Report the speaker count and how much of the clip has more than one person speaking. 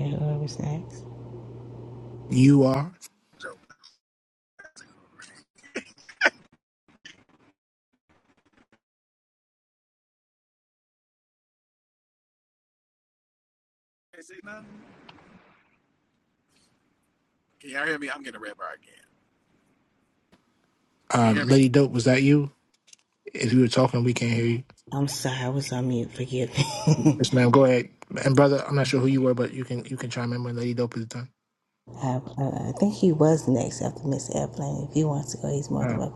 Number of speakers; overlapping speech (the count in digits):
3, about 2%